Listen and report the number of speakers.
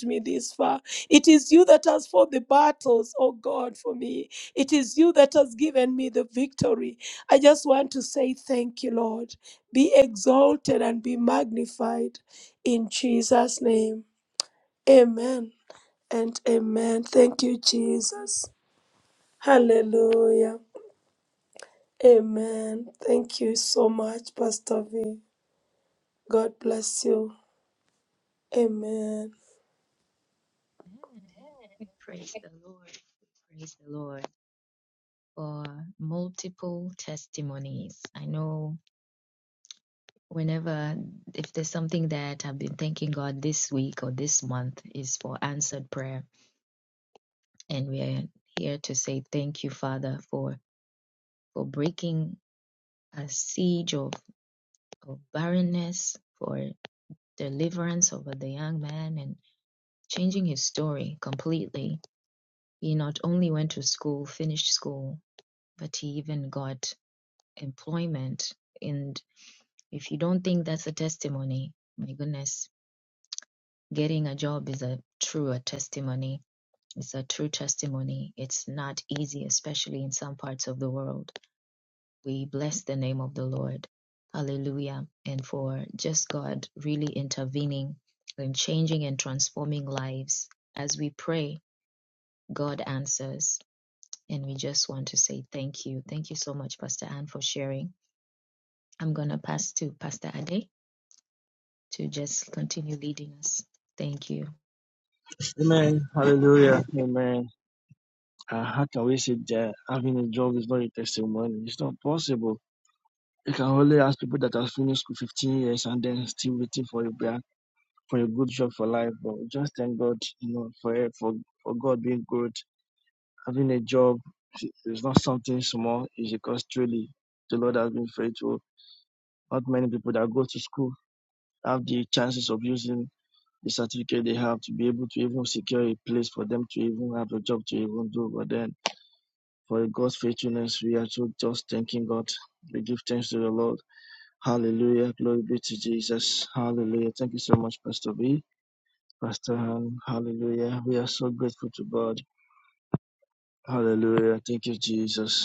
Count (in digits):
3